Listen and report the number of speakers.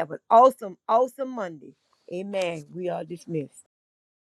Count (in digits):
1